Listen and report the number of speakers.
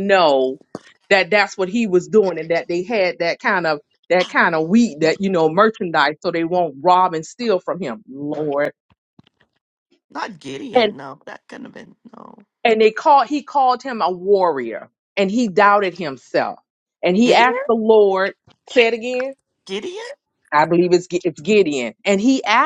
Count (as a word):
two